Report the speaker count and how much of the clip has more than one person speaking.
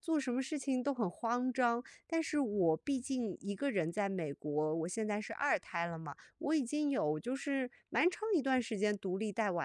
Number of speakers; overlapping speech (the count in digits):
1, no overlap